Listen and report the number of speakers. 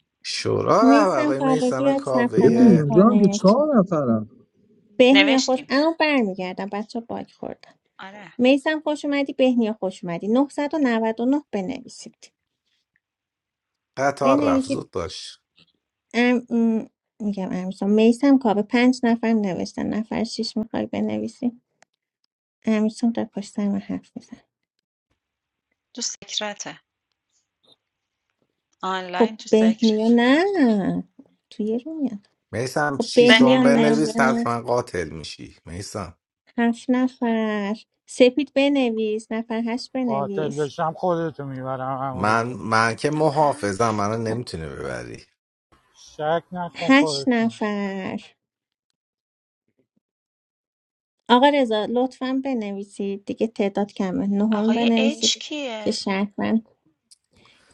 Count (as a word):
five